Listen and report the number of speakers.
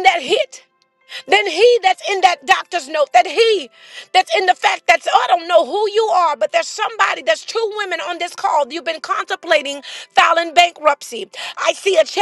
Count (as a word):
one